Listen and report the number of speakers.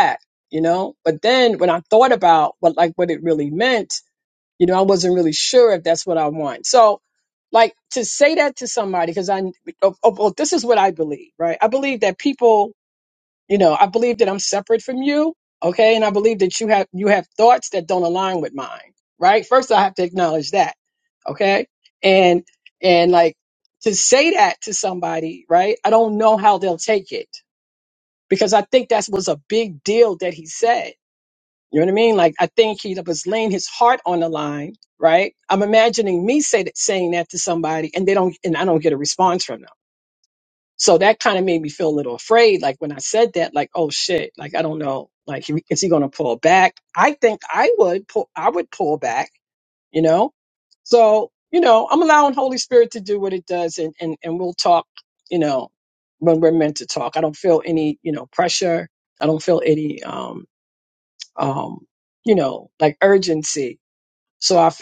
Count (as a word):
one